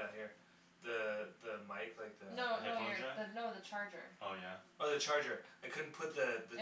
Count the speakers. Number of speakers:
3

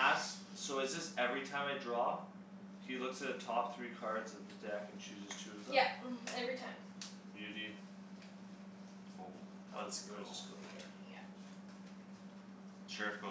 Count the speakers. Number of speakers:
3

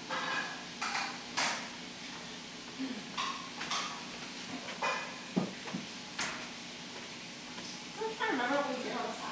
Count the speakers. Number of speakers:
1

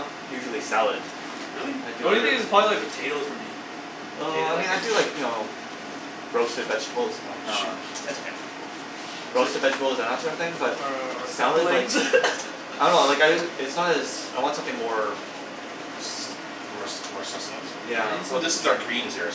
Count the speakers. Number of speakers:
3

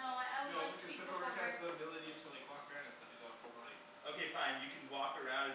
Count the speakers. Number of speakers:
3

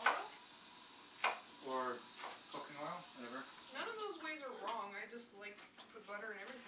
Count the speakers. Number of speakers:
3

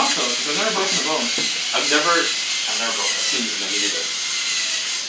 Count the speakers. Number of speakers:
3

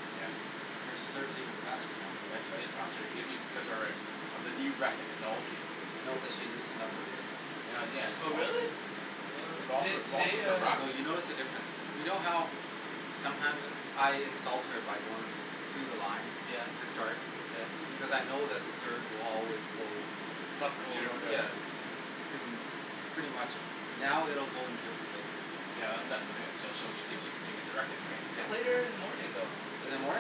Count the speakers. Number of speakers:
3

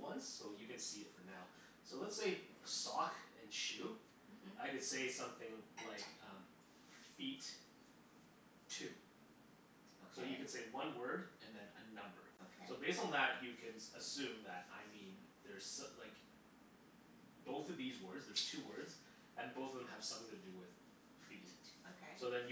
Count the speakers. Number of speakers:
2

